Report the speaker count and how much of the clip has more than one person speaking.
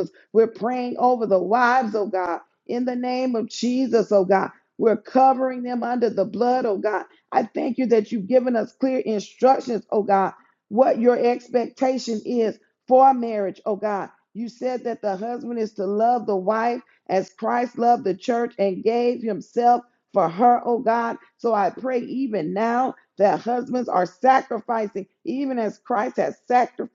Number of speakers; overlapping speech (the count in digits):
1, no overlap